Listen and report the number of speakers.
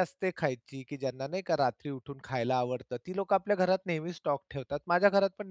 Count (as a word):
one